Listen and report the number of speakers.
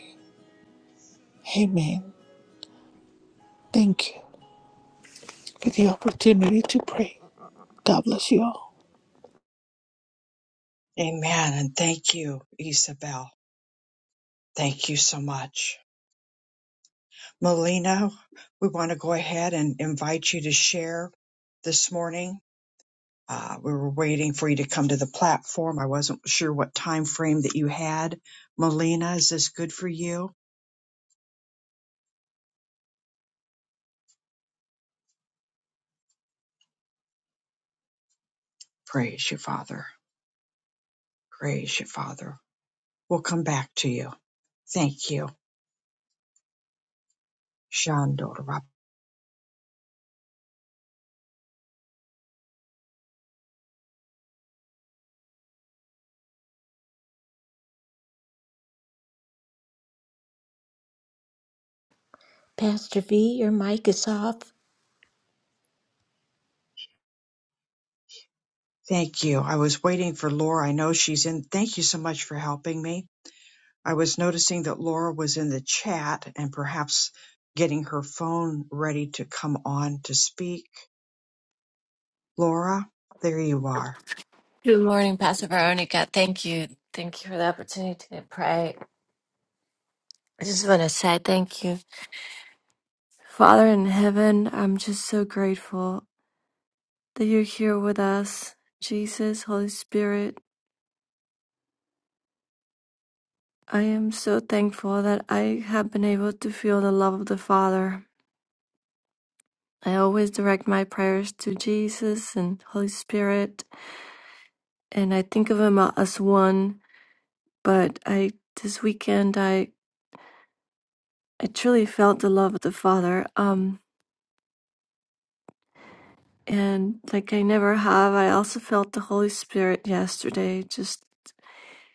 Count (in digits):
4